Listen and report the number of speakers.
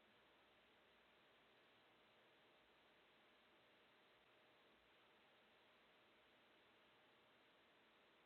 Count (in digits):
0